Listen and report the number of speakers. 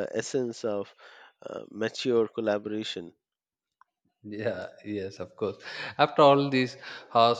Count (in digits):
2